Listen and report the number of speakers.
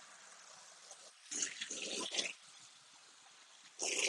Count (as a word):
zero